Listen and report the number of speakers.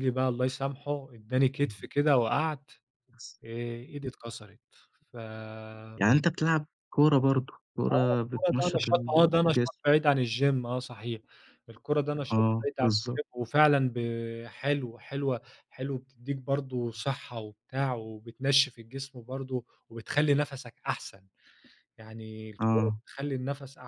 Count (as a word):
two